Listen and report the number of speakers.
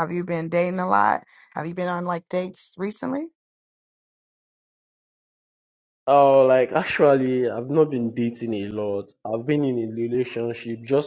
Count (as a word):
two